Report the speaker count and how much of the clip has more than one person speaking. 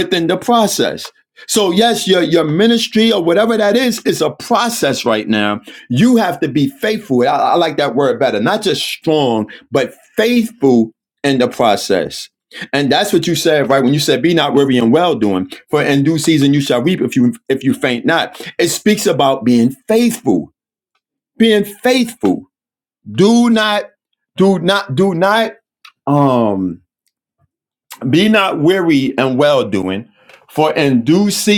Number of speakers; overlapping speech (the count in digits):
1, no overlap